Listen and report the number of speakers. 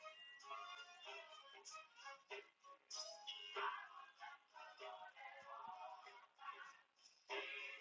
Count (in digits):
0